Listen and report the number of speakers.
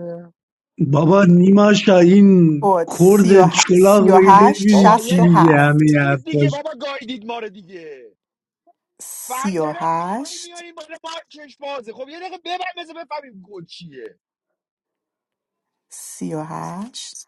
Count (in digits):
3